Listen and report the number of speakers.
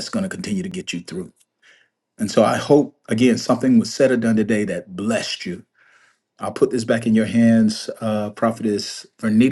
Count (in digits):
1